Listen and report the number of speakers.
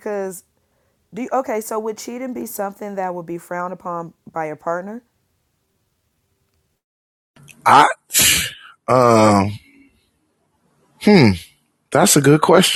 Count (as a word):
two